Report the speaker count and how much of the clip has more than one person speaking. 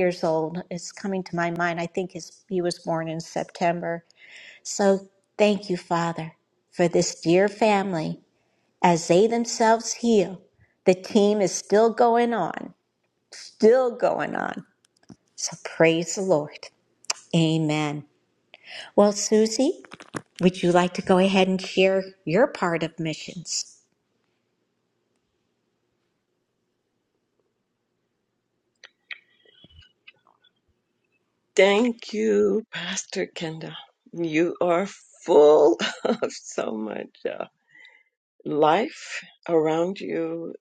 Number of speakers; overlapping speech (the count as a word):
two, no overlap